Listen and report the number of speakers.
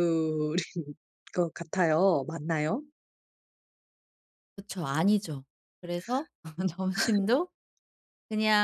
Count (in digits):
2